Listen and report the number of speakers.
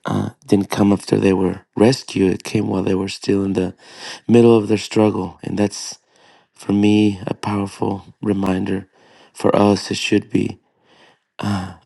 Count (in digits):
1